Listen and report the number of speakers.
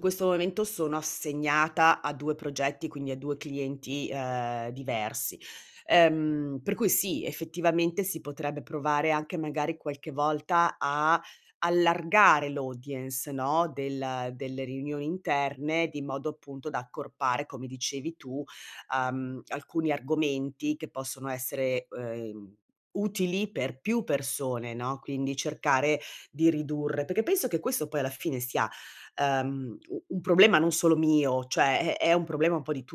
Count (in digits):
1